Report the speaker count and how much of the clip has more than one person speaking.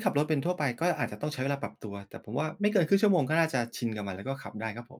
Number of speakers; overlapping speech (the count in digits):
1, no overlap